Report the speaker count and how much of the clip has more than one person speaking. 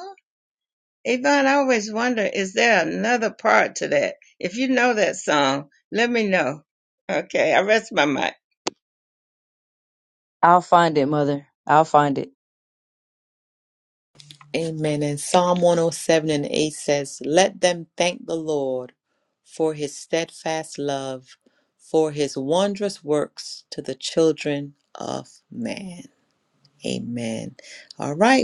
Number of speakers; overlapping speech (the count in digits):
3, no overlap